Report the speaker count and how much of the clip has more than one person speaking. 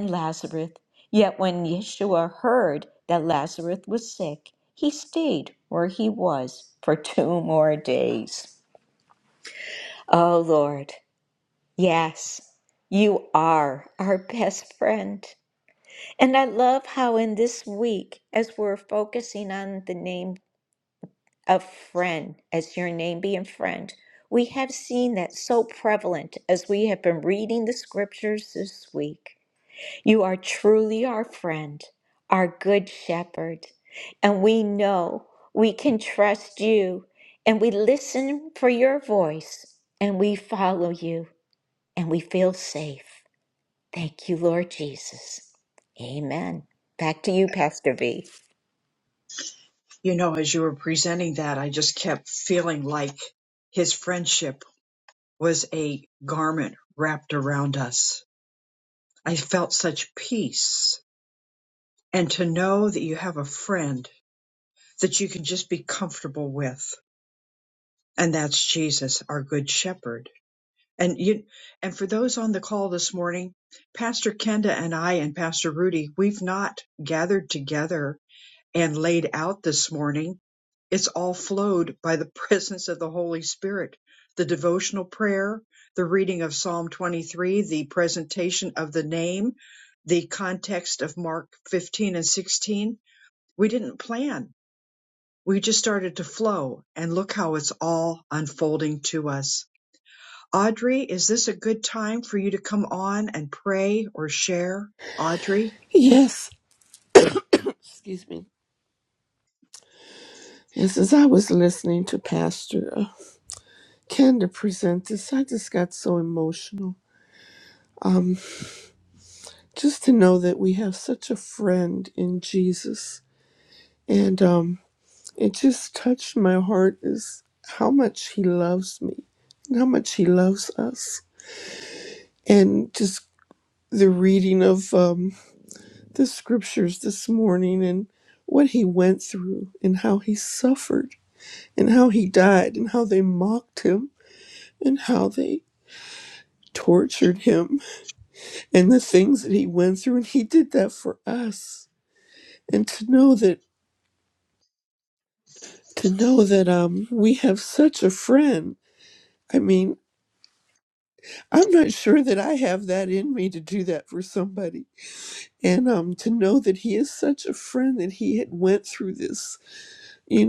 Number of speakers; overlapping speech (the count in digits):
3, no overlap